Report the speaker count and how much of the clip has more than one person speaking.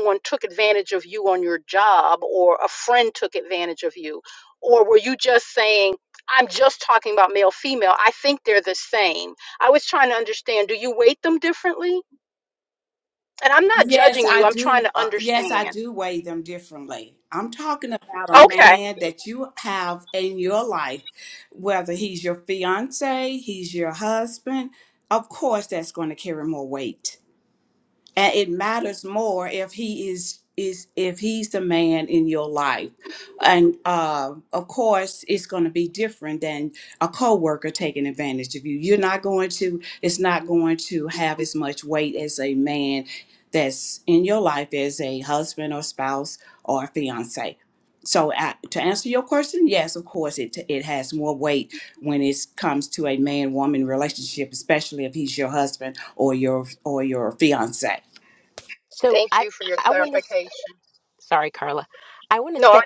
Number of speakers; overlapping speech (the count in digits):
3, about 5%